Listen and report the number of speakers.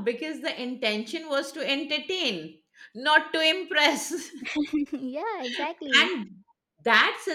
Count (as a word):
two